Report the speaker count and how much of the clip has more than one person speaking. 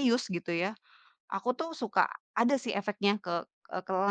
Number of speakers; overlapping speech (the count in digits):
1, no overlap